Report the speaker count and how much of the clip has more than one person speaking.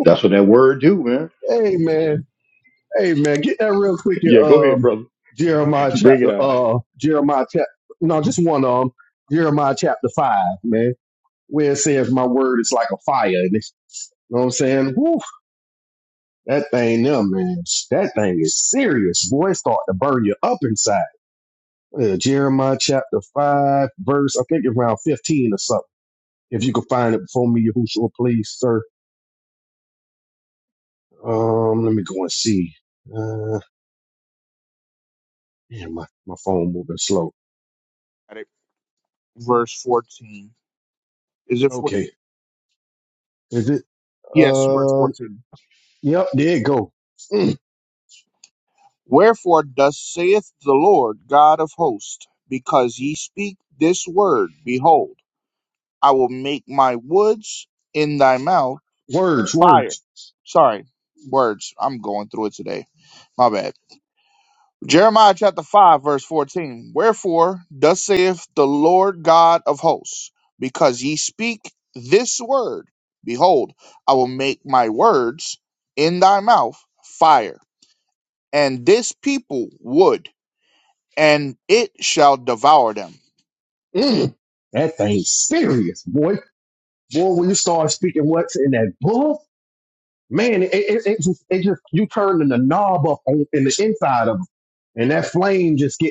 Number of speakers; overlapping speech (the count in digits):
3, about 3%